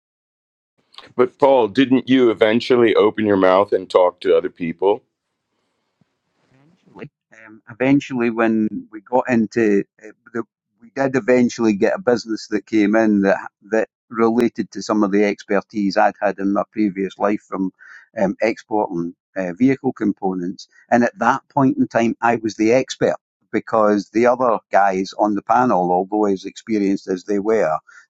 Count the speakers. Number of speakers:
2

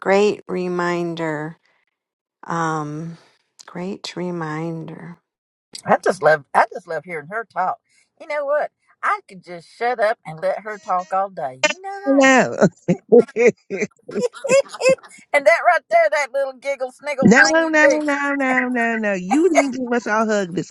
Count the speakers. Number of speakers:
3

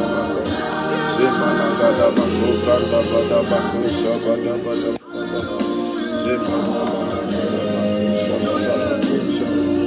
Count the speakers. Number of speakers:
0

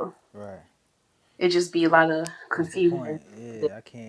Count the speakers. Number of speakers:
2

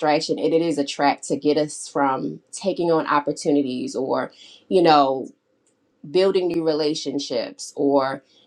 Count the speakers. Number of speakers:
1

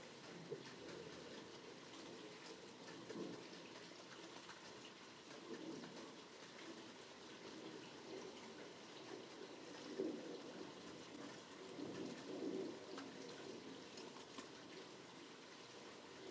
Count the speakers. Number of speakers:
0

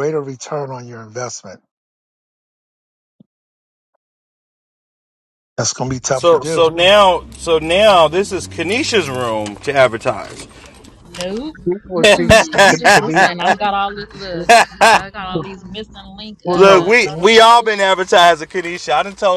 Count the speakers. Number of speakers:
3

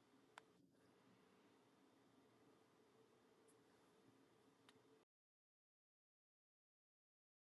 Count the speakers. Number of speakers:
0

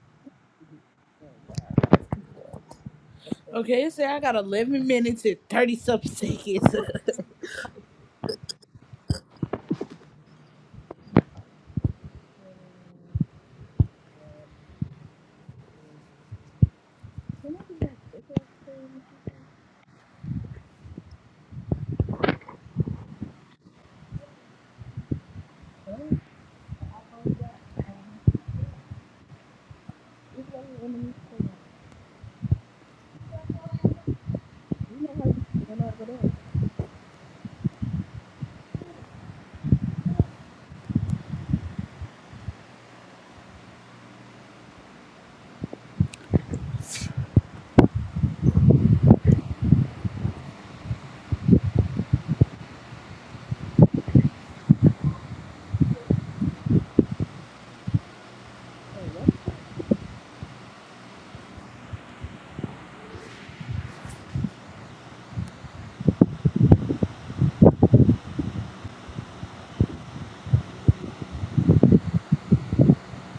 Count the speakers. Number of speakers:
2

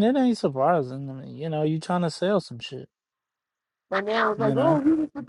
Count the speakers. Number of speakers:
2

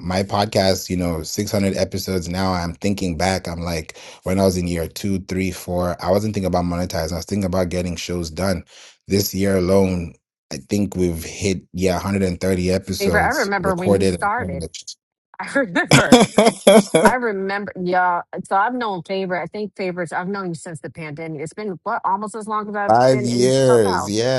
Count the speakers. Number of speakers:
2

